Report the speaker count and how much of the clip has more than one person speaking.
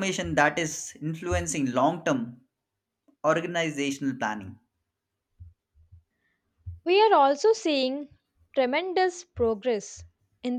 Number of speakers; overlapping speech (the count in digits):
2, no overlap